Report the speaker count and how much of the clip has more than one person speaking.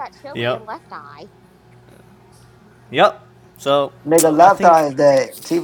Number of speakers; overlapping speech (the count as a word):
three, about 13%